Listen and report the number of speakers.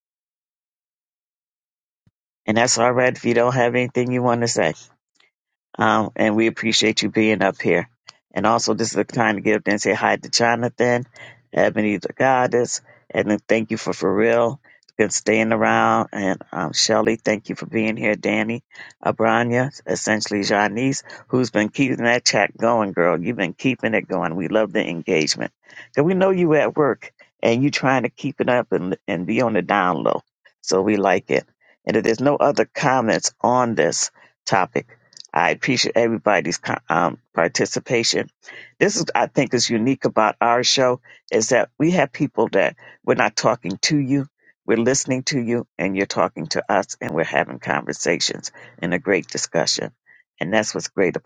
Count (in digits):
1